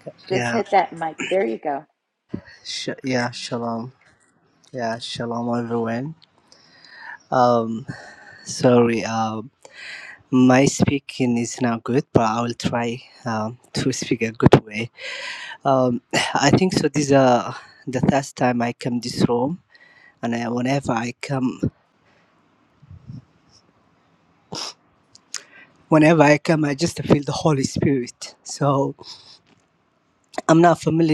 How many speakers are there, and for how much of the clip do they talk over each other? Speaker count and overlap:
2, about 1%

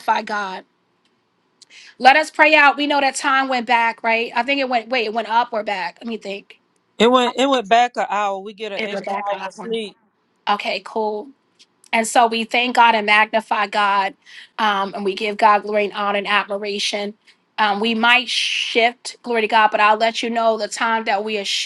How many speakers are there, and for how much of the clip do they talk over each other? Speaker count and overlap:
2, about 3%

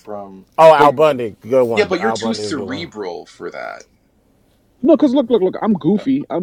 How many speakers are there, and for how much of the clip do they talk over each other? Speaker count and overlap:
3, about 19%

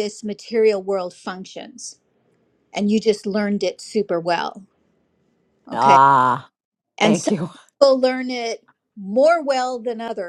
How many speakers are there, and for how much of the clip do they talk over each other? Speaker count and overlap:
2, about 5%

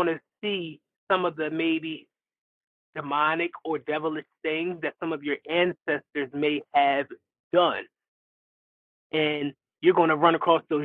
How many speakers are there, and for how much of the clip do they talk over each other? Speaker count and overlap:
1, no overlap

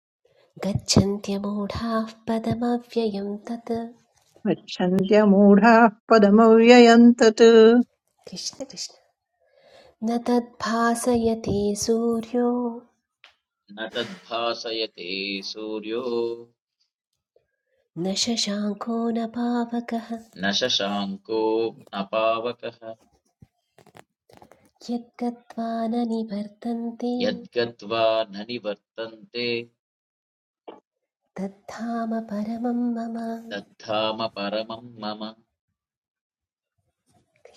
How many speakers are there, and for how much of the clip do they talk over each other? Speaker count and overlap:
3, no overlap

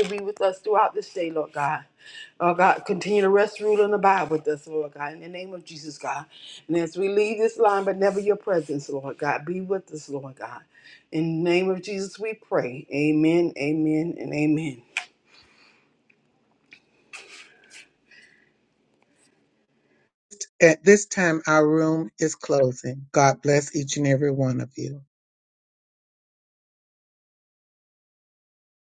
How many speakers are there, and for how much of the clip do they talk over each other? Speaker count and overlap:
2, no overlap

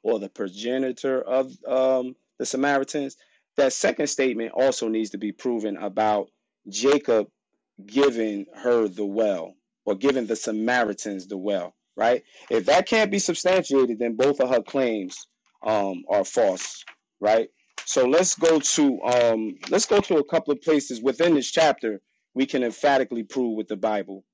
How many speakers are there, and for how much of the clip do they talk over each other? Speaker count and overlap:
1, no overlap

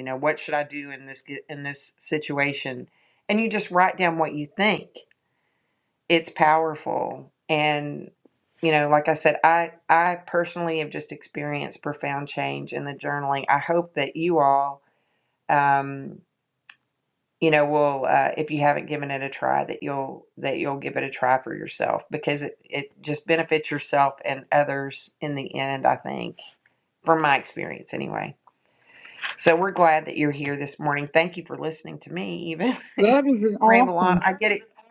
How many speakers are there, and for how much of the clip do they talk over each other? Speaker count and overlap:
2, about 2%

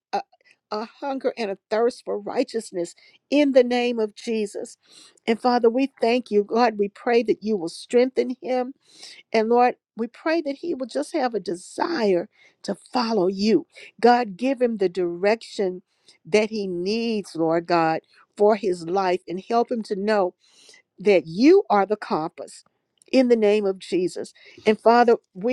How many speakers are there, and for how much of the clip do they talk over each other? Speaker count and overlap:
1, no overlap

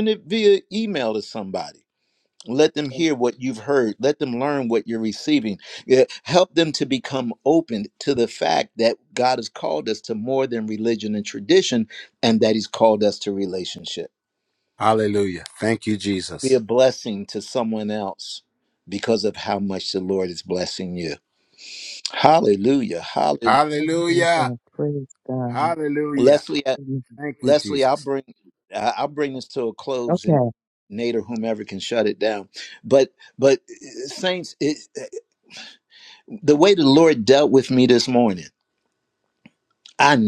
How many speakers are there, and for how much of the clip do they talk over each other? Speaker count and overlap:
3, about 5%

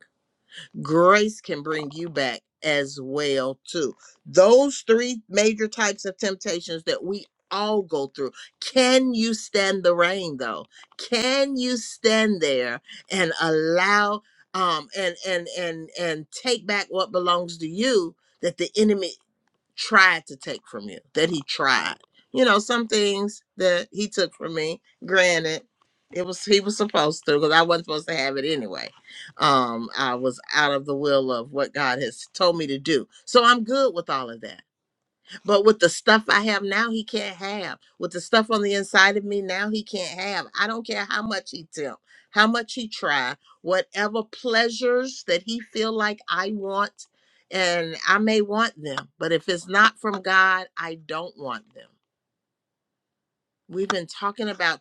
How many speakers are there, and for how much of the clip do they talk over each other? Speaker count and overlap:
1, no overlap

